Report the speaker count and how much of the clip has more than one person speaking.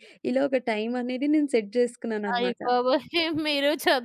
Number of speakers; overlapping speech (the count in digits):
2, about 9%